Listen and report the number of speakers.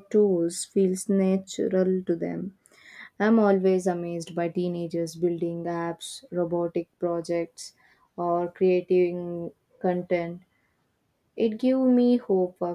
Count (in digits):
1